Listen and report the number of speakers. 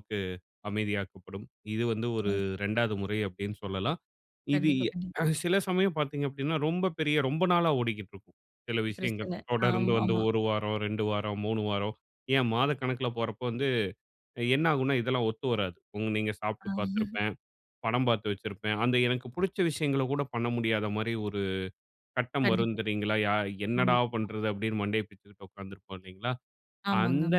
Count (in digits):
2